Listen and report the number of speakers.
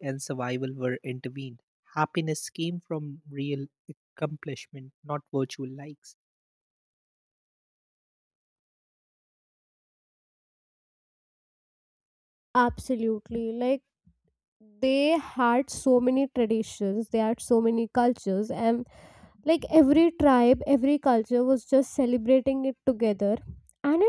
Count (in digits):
2